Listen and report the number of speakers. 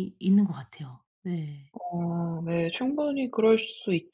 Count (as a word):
two